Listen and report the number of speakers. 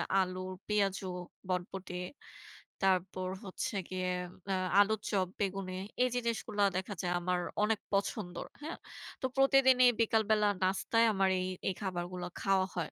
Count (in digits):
1